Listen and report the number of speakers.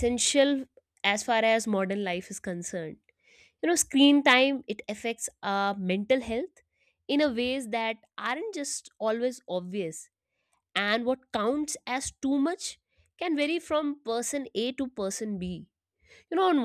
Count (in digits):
1